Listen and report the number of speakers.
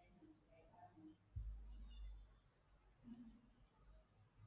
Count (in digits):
0